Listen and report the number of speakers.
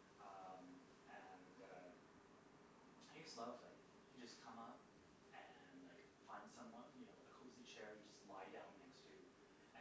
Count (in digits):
1